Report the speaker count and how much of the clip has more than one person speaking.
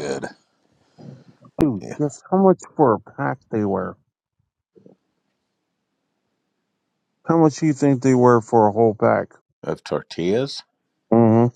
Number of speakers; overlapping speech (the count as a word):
two, about 1%